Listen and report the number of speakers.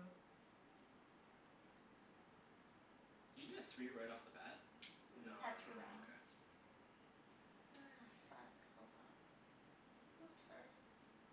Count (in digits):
2